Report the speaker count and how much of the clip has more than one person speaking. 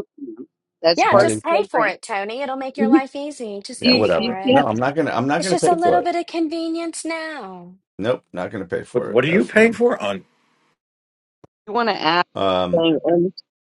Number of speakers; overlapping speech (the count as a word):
four, about 25%